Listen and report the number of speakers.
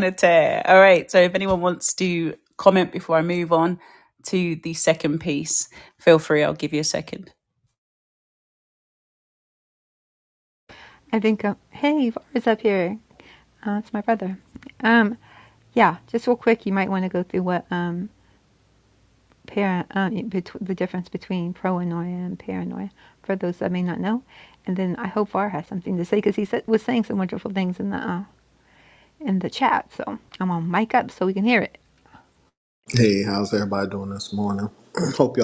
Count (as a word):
three